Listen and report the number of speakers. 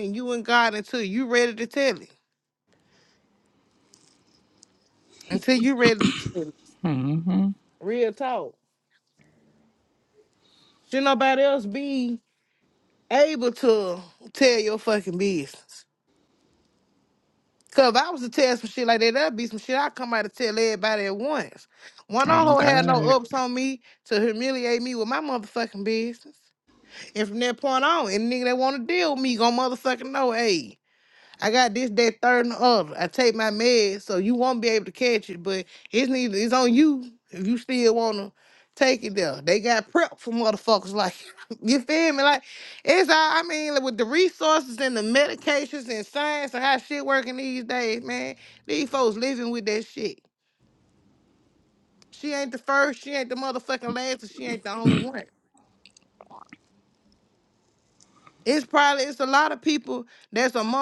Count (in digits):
2